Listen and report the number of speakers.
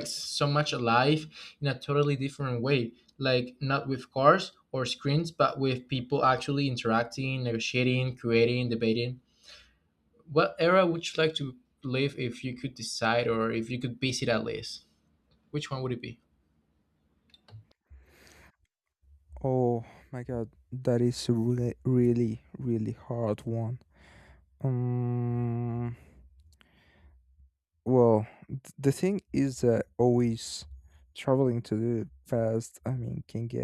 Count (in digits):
2